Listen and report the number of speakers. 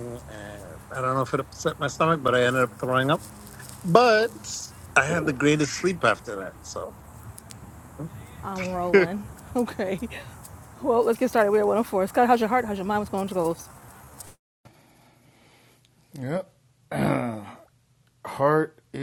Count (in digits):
3